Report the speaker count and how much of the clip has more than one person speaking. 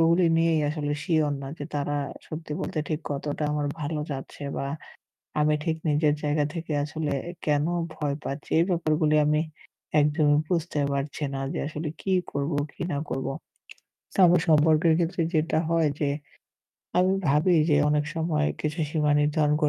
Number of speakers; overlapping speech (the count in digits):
1, no overlap